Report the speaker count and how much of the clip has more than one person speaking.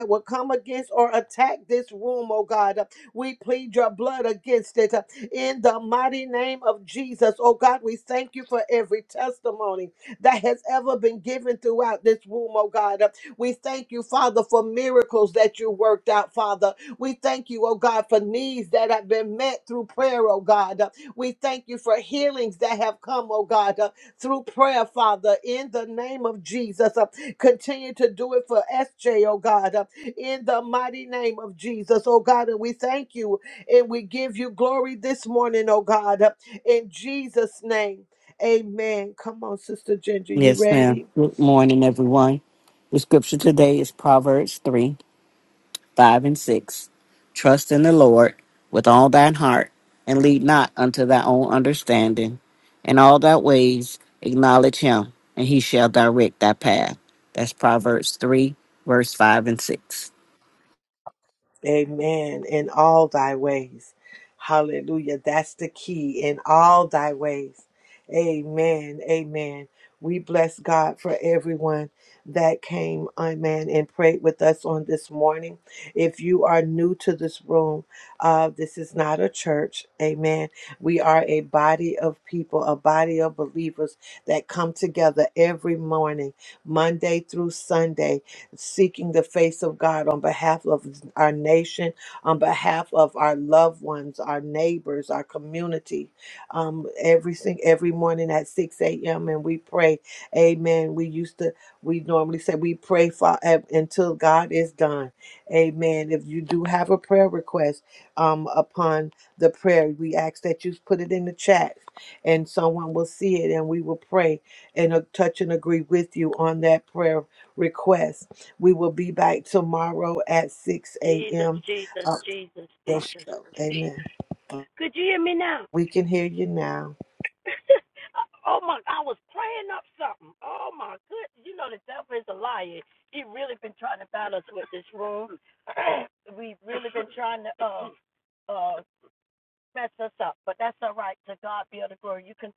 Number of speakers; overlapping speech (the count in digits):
3, about 1%